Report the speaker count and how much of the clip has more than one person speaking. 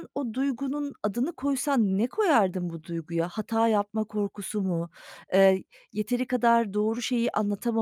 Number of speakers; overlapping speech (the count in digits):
1, no overlap